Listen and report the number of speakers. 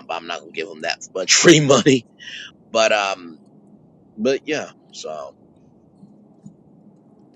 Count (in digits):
1